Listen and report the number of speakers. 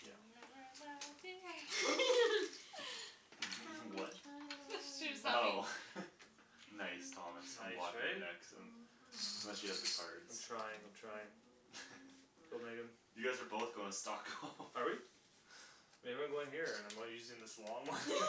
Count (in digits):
4